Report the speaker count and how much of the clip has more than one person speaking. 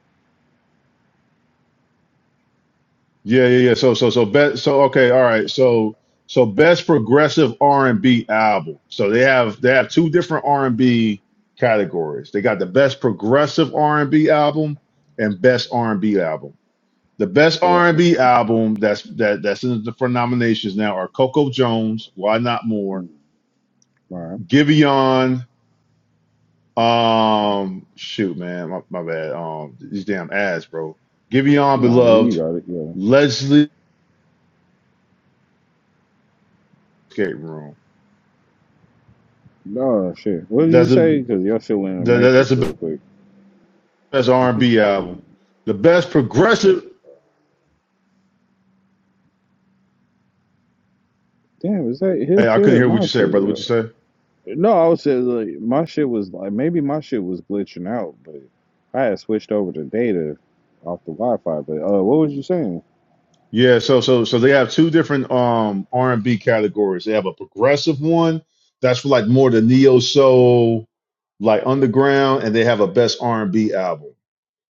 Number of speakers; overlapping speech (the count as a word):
two, about 3%